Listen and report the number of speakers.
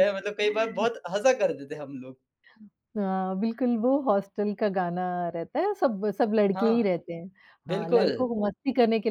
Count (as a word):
two